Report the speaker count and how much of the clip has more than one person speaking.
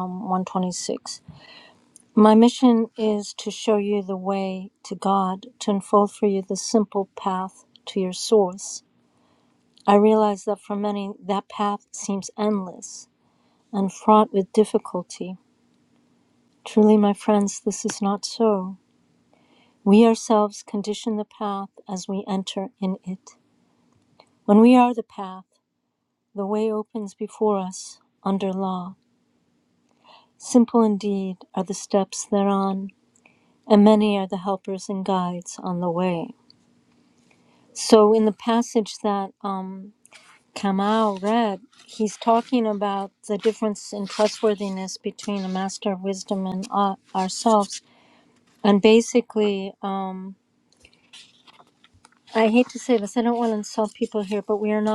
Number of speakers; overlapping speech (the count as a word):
one, no overlap